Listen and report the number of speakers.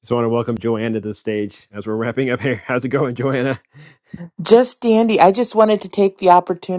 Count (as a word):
two